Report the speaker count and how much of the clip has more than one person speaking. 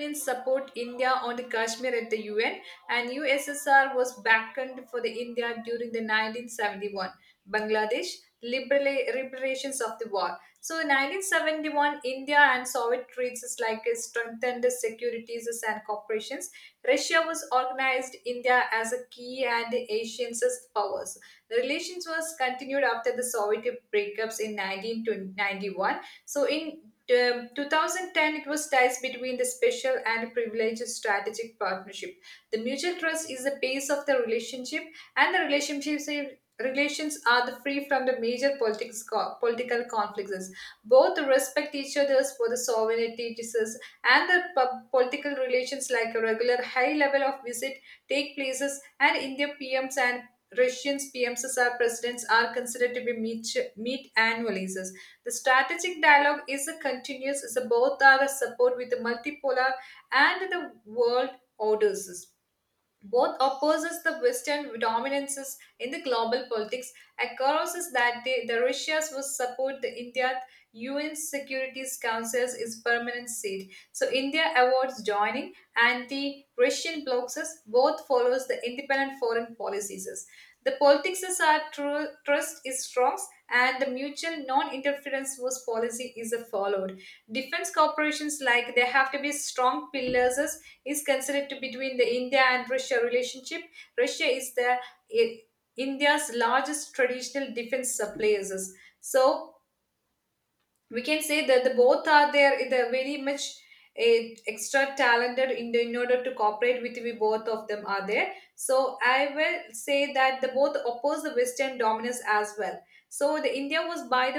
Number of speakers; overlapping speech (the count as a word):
one, no overlap